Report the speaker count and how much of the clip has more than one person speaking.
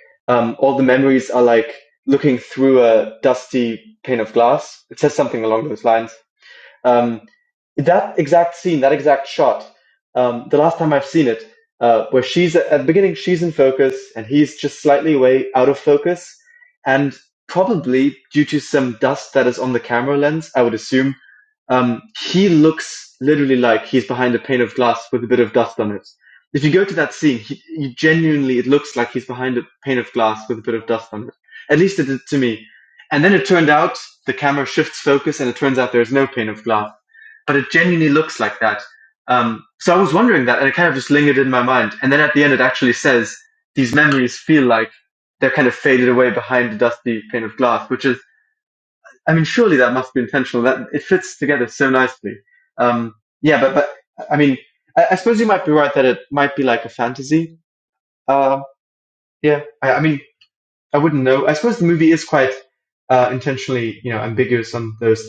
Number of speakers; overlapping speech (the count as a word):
one, no overlap